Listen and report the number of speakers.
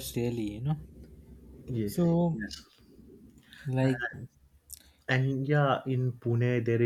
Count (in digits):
2